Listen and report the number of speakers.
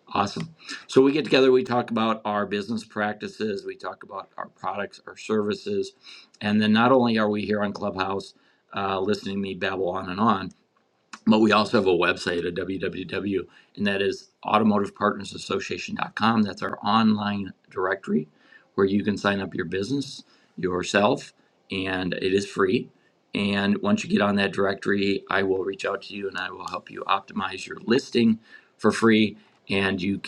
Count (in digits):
1